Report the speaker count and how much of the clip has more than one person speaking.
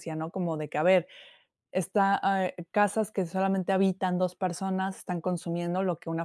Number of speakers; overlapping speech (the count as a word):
one, no overlap